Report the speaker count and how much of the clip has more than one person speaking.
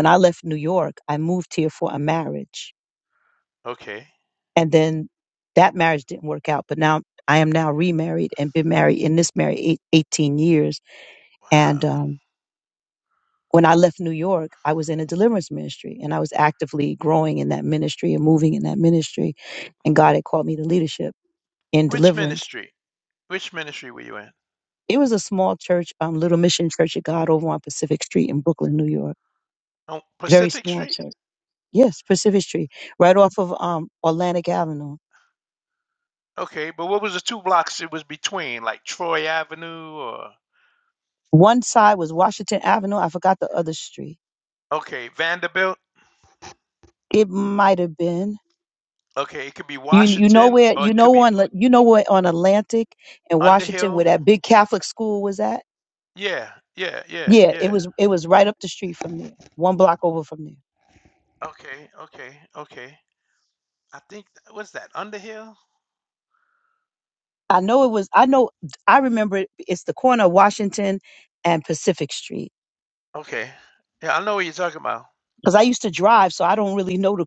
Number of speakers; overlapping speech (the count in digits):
2, about 5%